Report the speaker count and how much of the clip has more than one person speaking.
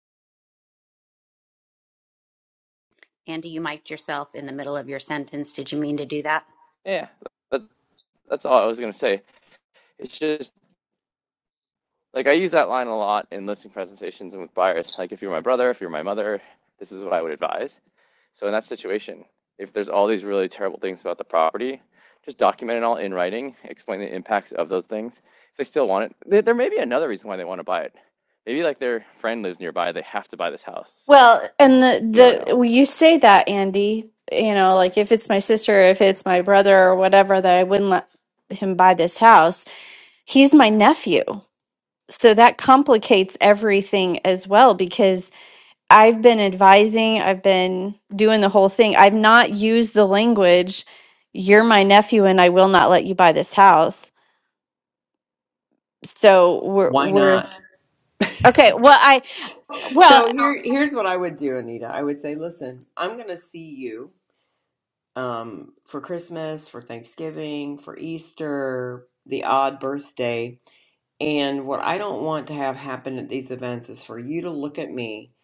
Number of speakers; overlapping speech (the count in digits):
4, about 2%